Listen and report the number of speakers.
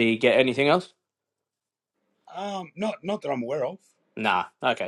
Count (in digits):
2